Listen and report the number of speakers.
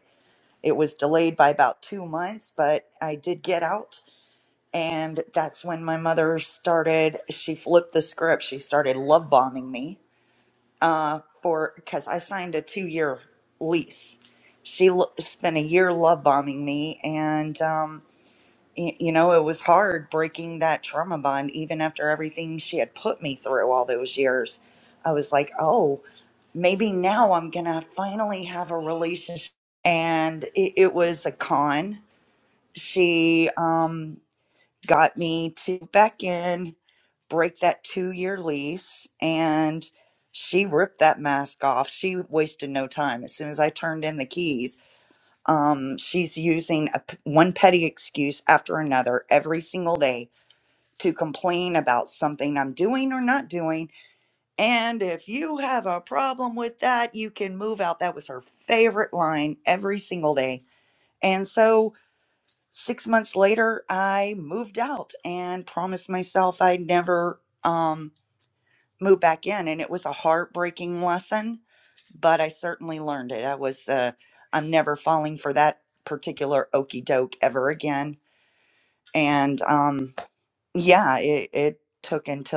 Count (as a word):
one